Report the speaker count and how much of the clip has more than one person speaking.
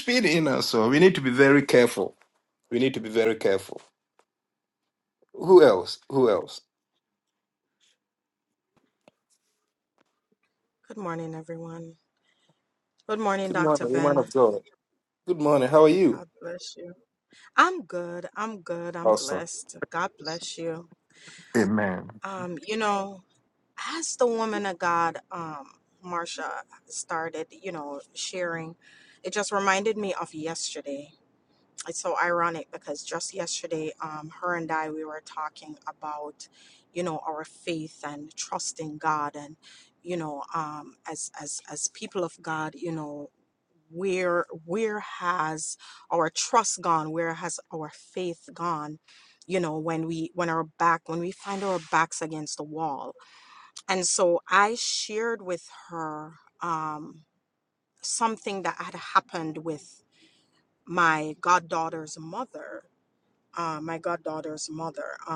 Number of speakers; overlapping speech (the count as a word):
two, about 2%